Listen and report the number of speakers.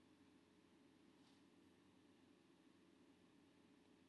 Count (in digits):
0